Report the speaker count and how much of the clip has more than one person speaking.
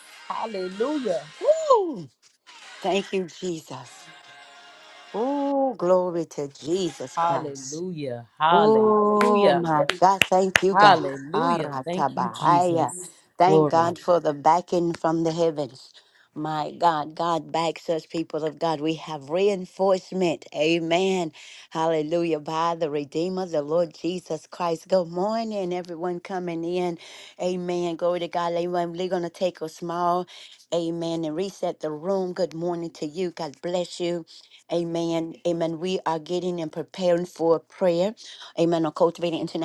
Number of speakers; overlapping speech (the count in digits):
2, about 9%